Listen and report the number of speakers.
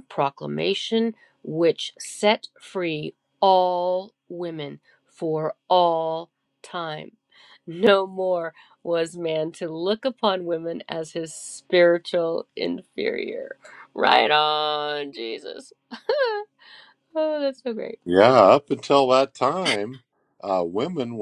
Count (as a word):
two